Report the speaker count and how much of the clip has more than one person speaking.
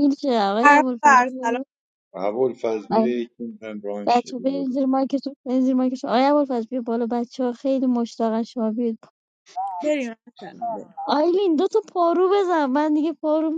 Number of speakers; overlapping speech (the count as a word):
three, about 12%